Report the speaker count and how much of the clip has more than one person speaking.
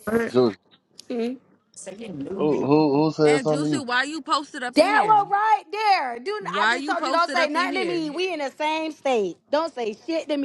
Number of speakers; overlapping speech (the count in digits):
4, about 29%